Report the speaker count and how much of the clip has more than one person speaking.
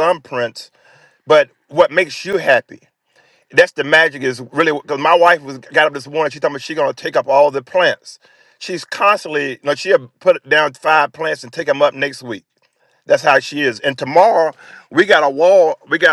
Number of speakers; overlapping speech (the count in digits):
1, no overlap